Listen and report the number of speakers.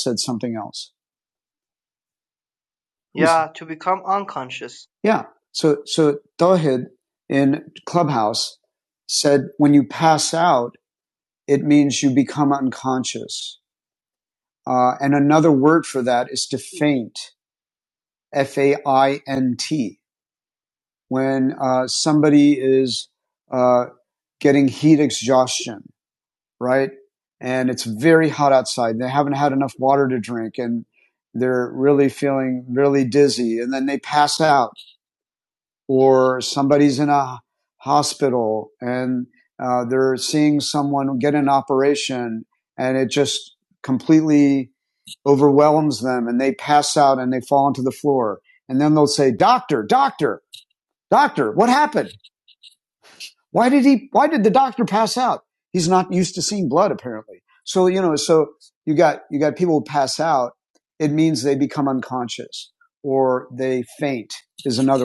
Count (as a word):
two